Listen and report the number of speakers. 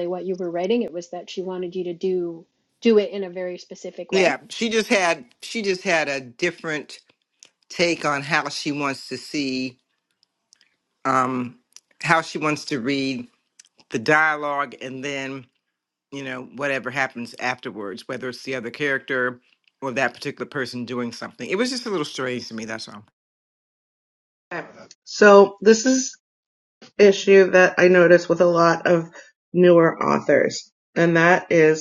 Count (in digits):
3